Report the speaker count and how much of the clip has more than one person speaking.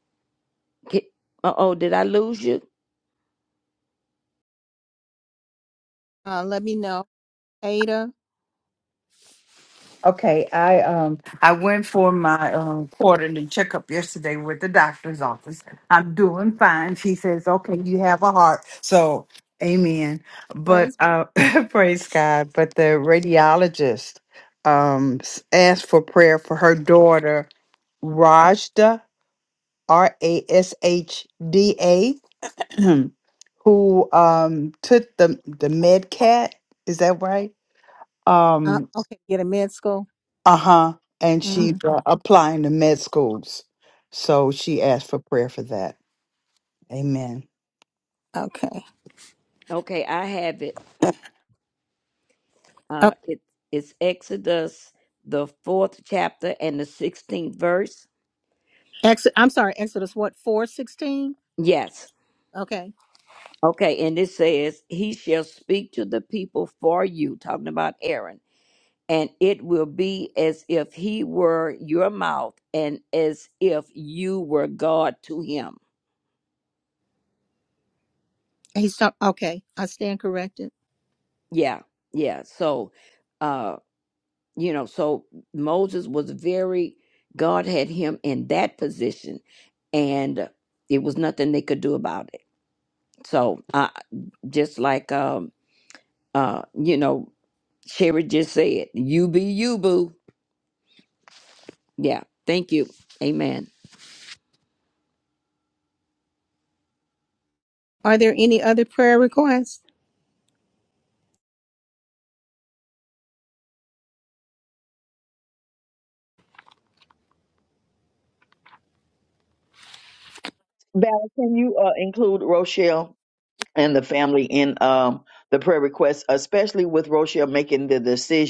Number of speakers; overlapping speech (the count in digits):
4, about 1%